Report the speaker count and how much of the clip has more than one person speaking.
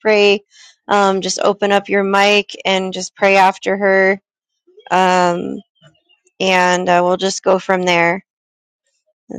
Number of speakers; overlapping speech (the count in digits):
1, no overlap